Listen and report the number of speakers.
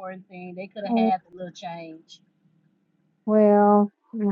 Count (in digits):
2